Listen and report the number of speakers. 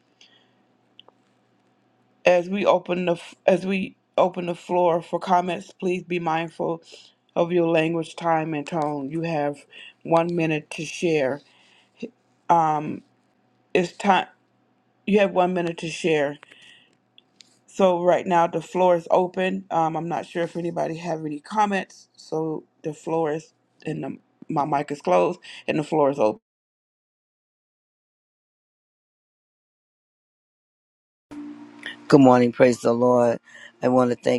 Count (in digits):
2